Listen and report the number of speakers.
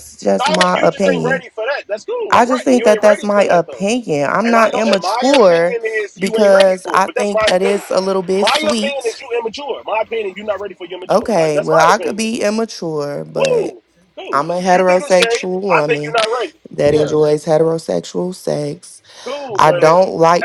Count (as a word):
two